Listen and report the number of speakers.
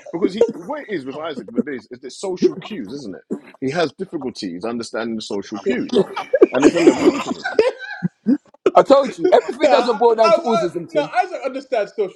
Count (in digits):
3